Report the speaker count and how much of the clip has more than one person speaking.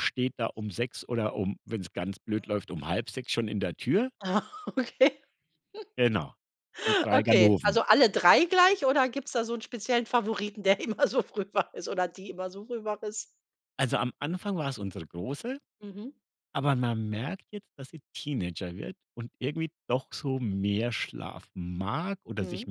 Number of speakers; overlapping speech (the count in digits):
2, about 4%